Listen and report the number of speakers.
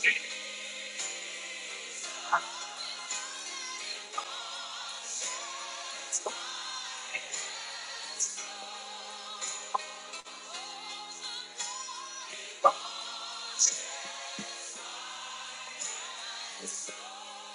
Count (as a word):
zero